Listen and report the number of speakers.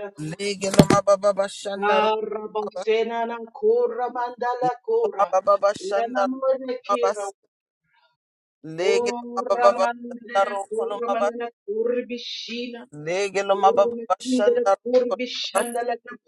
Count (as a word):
two